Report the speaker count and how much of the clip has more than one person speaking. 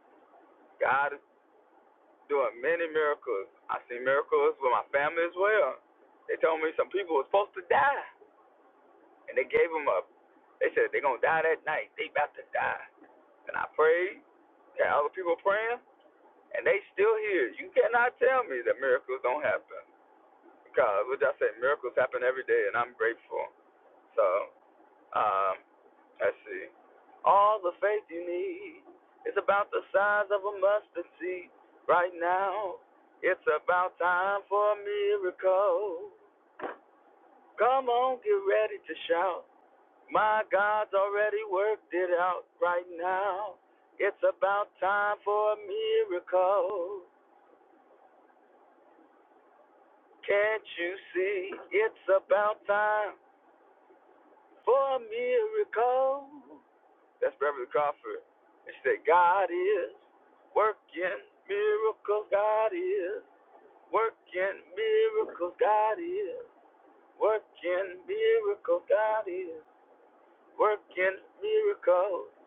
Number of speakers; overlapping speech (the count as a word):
one, no overlap